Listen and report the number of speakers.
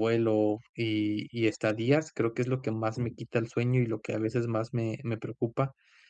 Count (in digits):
1